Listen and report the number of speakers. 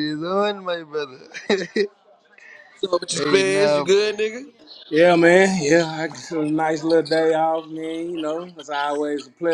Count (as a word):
three